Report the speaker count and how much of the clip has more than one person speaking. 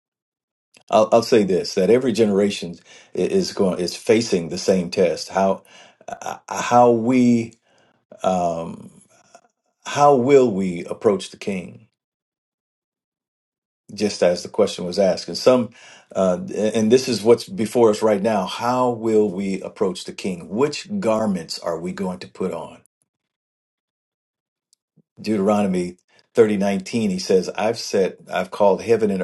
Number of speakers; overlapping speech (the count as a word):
one, no overlap